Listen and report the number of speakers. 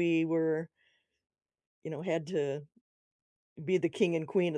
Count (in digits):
1